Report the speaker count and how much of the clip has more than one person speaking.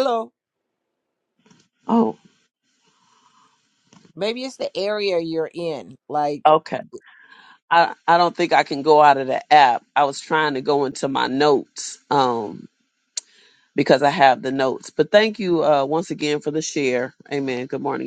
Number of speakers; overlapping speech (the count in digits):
2, no overlap